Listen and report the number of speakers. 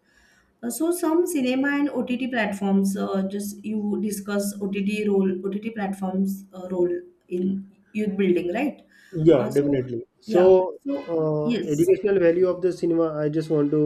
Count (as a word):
two